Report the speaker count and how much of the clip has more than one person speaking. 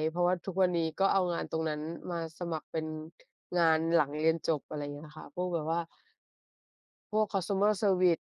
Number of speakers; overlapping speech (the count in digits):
1, no overlap